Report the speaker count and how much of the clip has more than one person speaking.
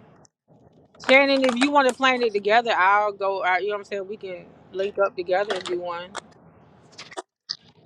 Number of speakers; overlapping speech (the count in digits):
1, no overlap